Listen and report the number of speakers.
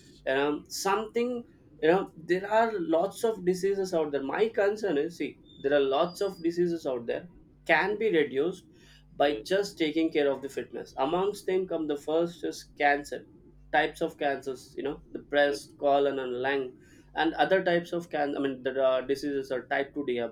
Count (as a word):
one